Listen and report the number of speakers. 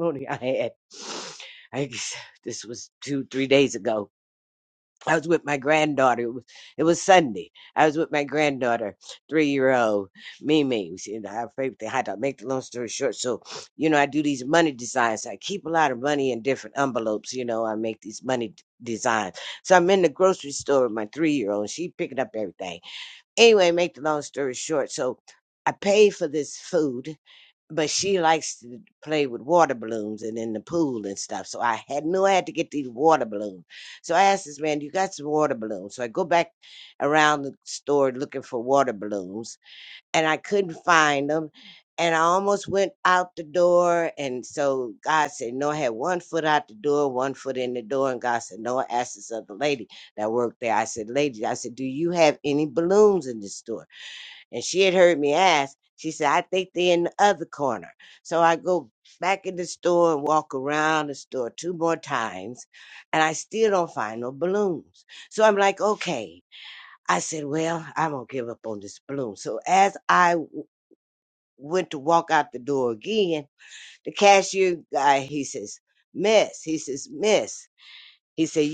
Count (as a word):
one